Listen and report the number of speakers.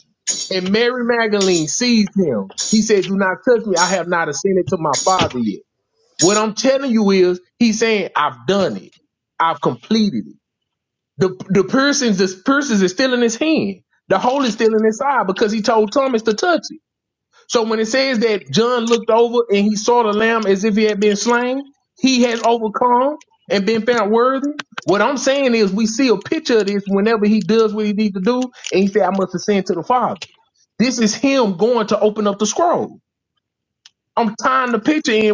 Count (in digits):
1